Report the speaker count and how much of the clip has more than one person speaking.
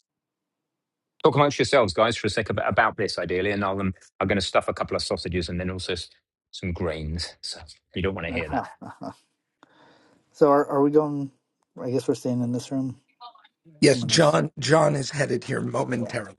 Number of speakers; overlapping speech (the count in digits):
3, about 6%